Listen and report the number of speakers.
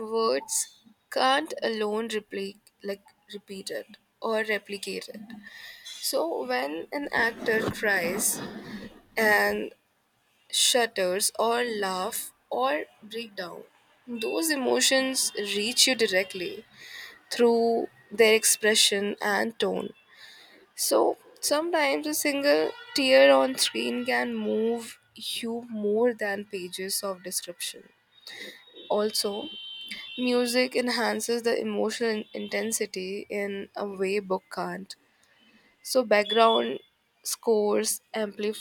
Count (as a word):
one